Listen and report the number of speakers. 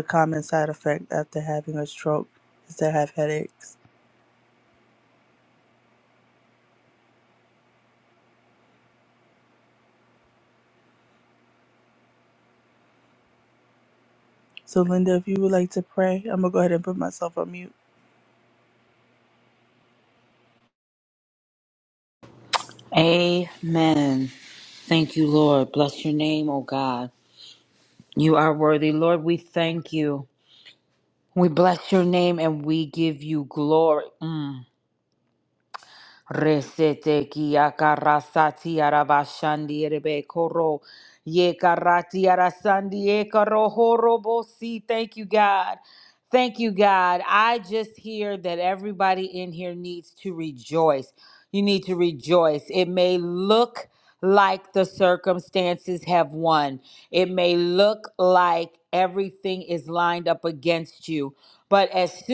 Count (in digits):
2